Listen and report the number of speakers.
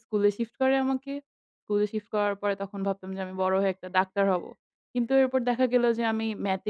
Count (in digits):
1